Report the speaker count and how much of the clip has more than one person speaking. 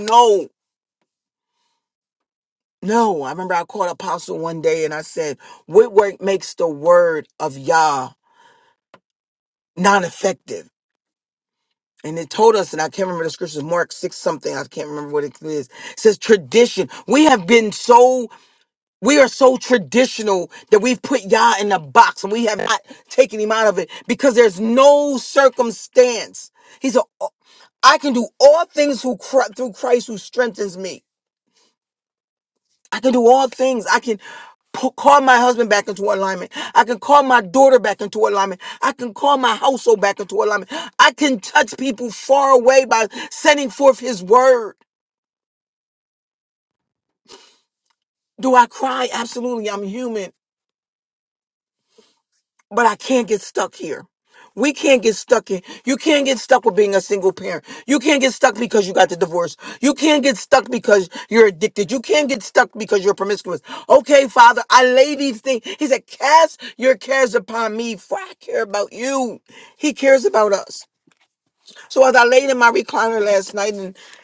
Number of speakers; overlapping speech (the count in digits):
1, no overlap